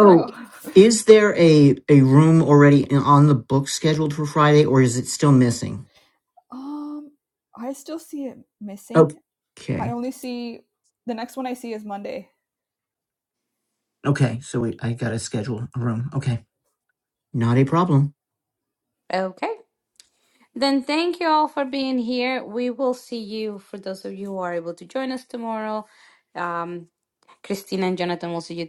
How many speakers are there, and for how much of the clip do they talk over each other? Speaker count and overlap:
3, about 2%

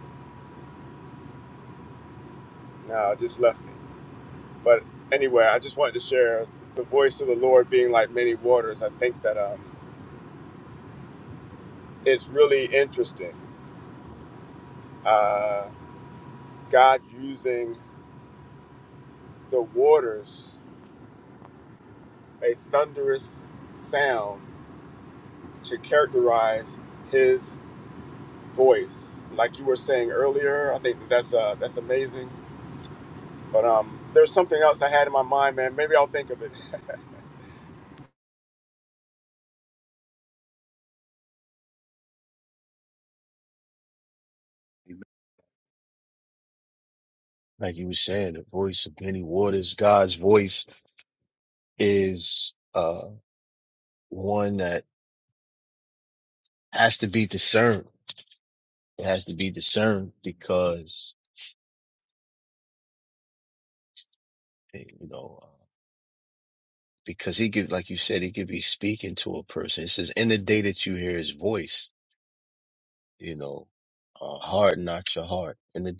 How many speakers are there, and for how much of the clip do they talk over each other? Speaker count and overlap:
2, no overlap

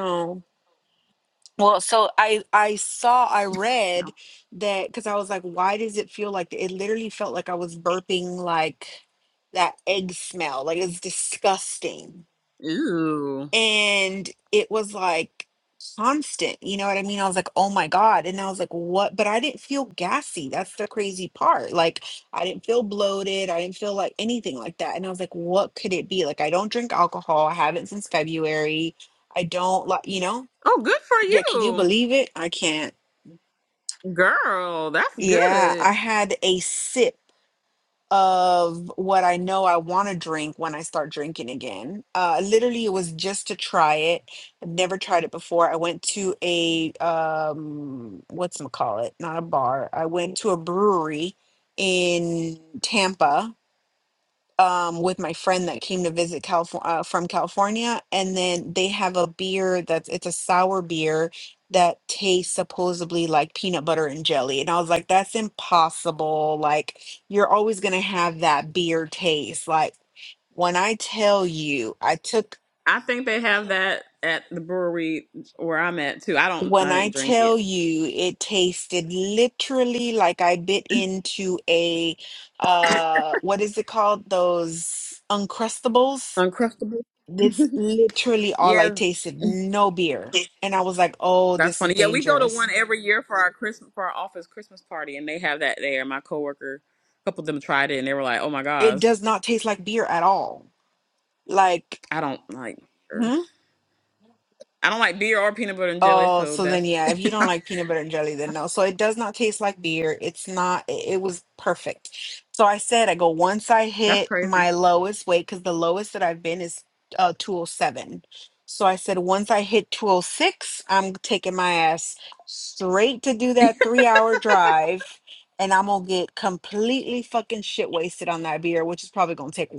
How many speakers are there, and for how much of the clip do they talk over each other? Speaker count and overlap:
2, about 4%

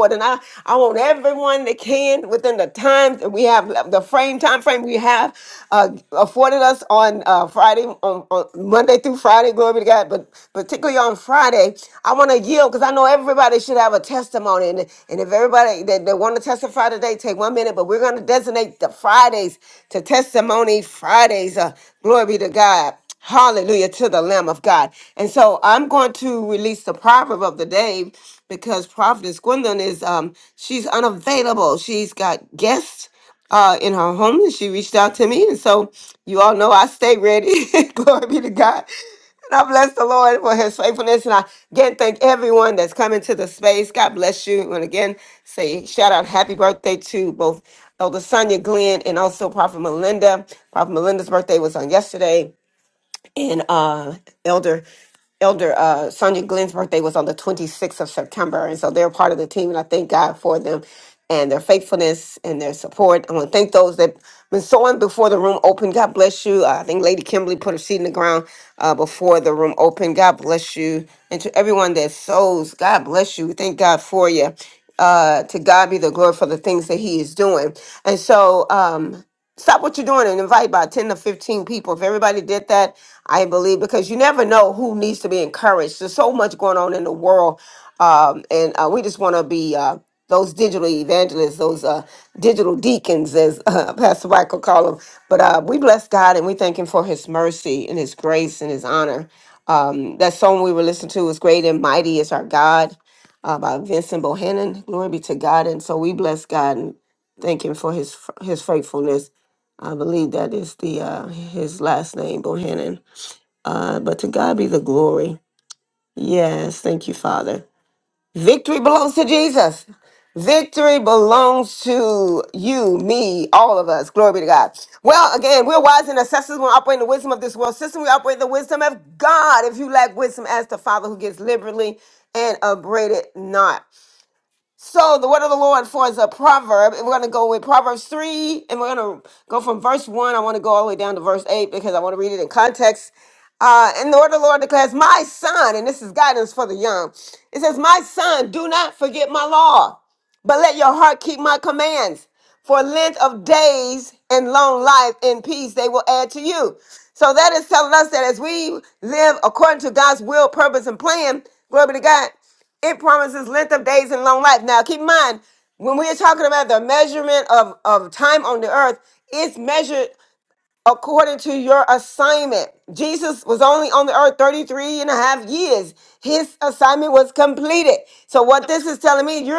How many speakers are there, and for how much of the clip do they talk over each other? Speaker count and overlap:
1, no overlap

